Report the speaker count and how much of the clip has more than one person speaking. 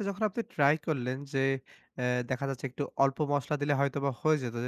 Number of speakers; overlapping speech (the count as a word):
one, no overlap